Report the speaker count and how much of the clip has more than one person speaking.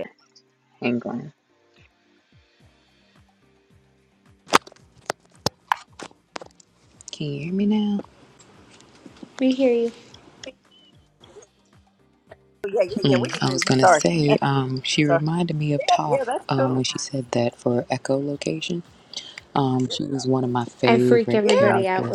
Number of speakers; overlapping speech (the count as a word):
three, about 16%